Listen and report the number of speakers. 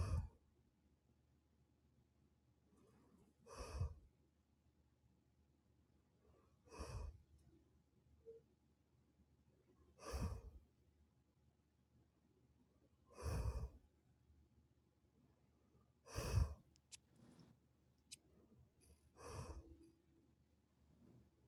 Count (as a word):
zero